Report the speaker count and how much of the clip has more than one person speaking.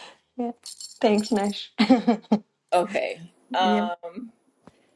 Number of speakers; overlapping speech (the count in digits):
2, about 5%